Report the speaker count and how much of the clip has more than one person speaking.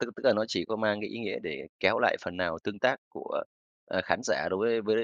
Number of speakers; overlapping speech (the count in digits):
1, no overlap